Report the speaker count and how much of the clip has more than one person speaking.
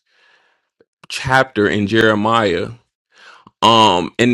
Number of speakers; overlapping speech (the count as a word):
one, no overlap